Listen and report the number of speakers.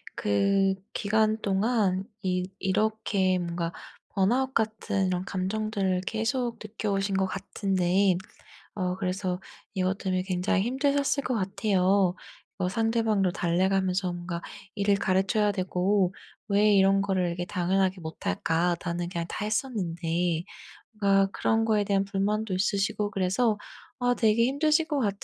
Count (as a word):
one